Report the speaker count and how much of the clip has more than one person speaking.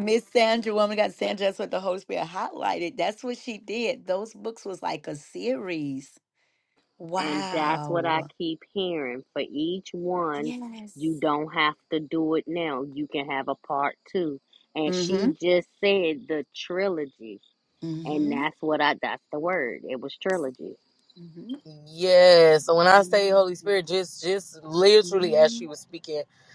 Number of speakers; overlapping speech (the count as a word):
three, about 10%